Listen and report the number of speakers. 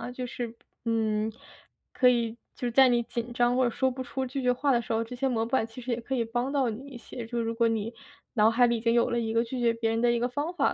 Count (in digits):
1